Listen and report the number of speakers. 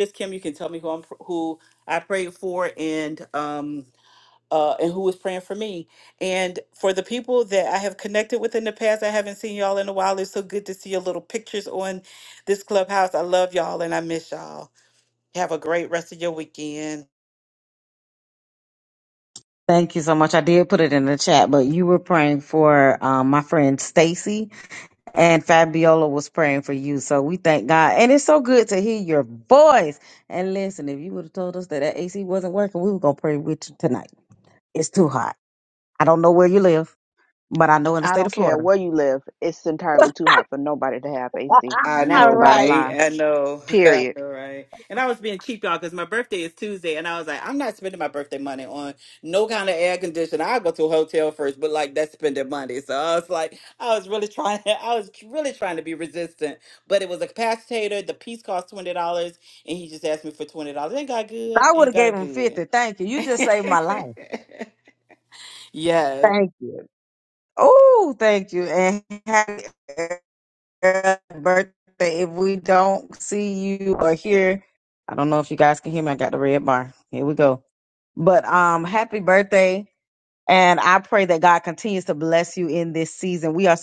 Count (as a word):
three